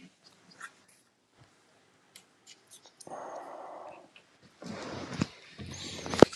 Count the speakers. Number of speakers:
zero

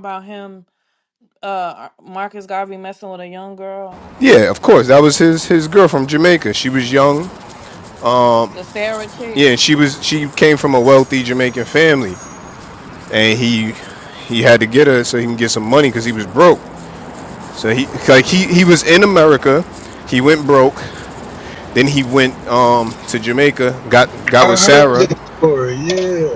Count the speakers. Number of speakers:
three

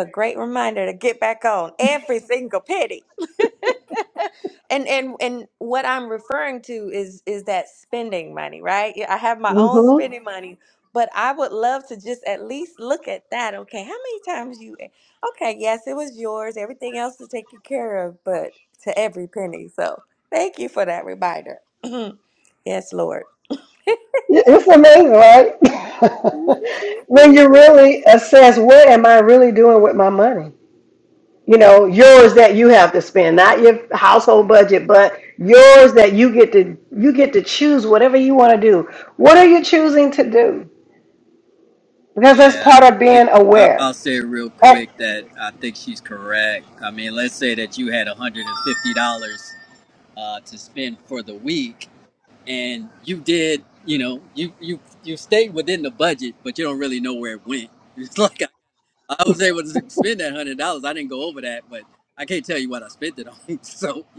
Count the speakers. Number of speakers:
three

